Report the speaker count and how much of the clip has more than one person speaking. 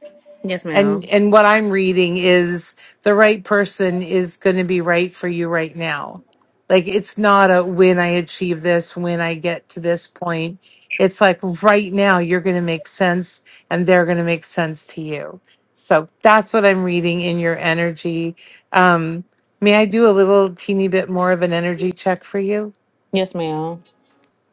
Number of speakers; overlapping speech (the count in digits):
2, about 1%